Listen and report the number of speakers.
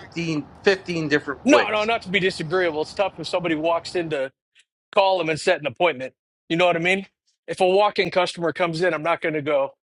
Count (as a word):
two